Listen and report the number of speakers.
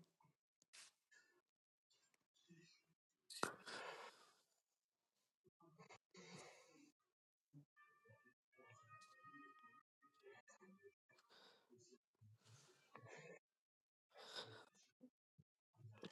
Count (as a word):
zero